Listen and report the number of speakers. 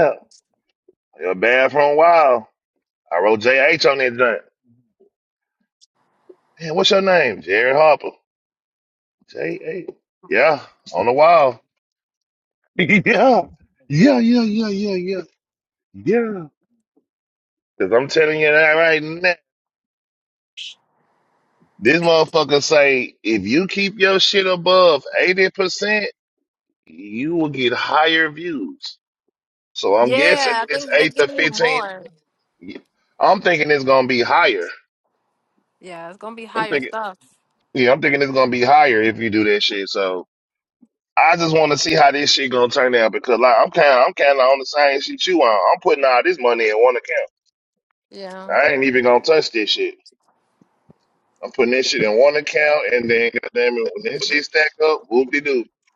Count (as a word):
two